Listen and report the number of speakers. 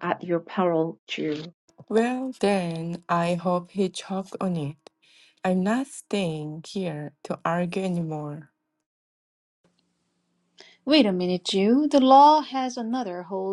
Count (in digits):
3